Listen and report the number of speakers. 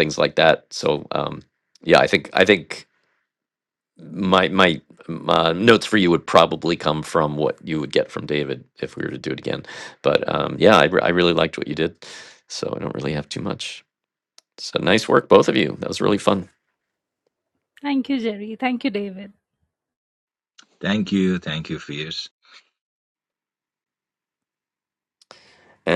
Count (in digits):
3